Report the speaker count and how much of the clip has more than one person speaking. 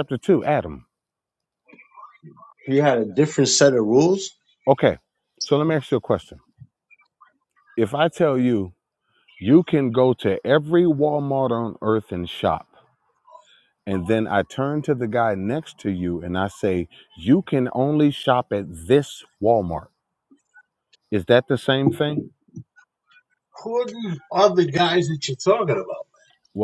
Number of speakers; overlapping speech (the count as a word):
two, no overlap